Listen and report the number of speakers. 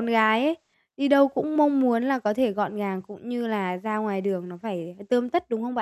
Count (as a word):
one